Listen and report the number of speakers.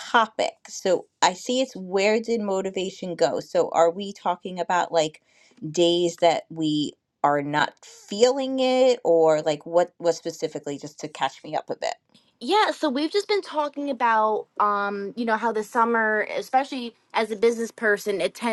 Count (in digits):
2